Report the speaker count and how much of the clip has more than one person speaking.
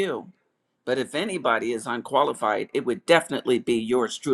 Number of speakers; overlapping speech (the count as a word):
one, no overlap